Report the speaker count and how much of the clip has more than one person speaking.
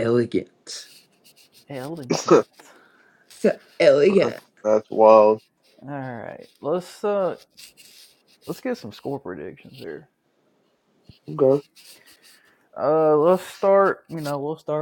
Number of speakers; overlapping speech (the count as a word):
three, about 1%